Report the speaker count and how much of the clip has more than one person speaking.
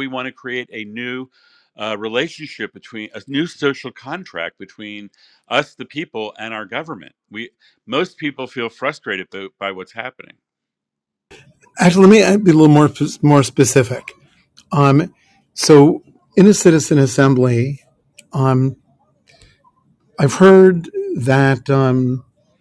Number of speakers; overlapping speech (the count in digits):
2, no overlap